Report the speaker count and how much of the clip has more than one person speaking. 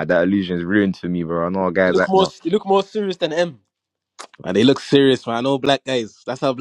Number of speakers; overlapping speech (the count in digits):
3, about 7%